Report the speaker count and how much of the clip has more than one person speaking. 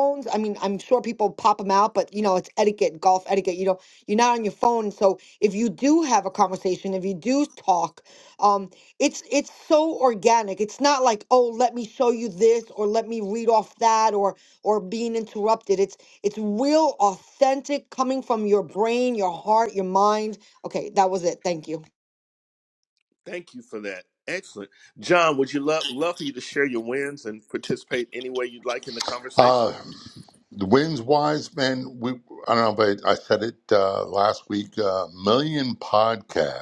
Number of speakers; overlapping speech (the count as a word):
three, under 1%